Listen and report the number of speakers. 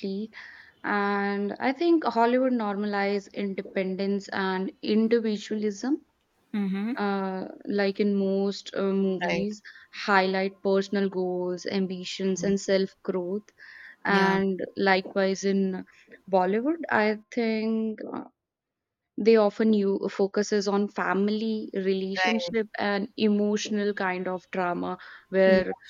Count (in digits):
2